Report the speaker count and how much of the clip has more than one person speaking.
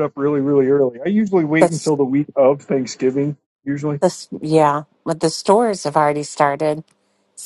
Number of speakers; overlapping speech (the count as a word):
two, about 1%